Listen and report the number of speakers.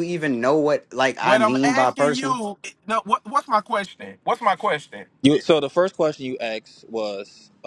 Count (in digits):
3